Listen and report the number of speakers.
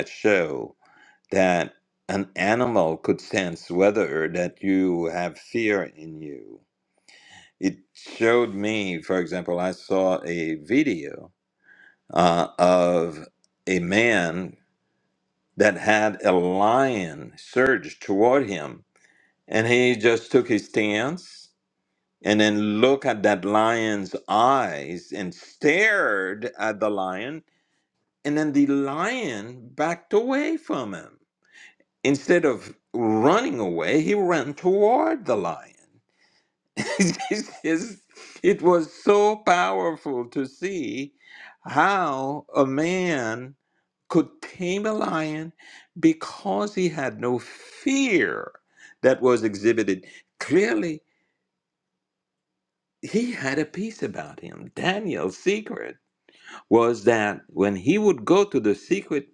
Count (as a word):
one